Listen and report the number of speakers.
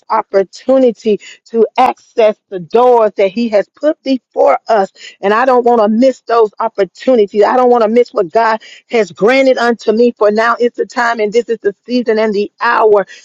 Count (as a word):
one